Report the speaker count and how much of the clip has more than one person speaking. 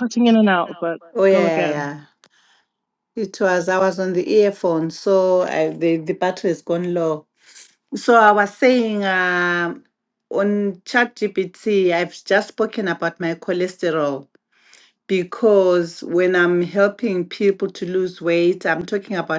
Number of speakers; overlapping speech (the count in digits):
2, about 3%